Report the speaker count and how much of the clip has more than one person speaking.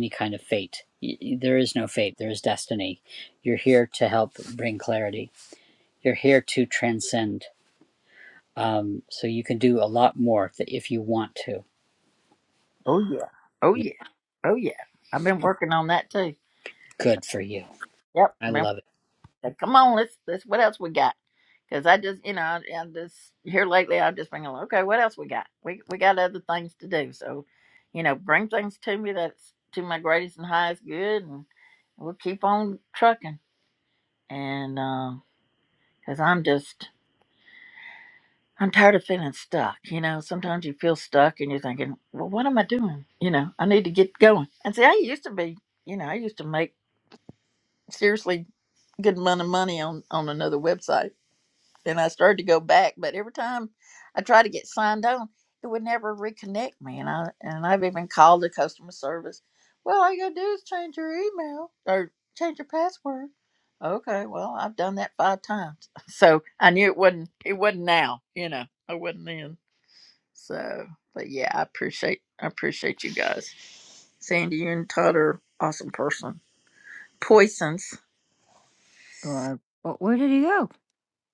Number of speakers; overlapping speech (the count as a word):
three, under 1%